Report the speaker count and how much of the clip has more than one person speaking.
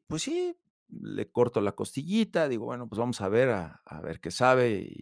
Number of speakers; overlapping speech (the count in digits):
1, no overlap